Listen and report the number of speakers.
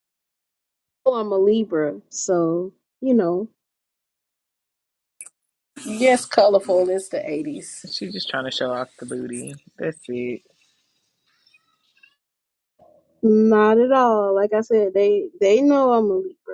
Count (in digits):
3